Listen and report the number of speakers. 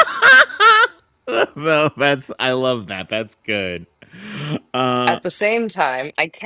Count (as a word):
two